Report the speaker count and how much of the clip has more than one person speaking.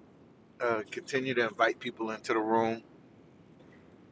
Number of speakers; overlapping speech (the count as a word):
one, no overlap